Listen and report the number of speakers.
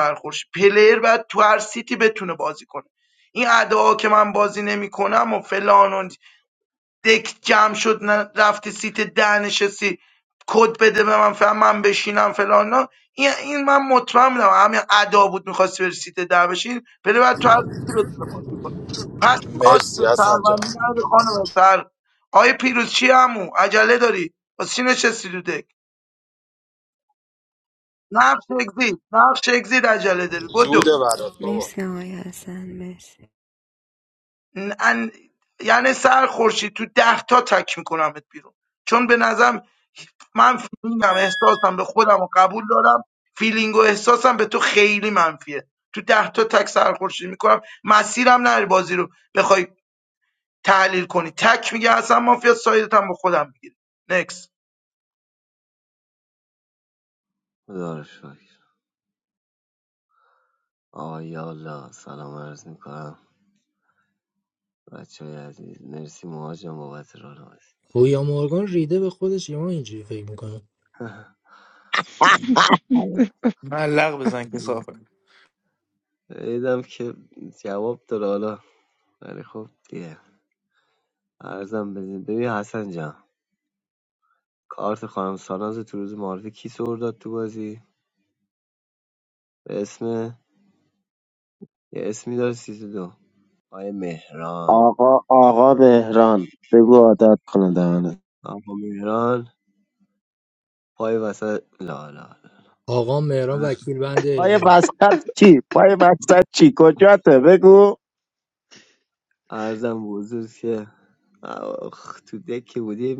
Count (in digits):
7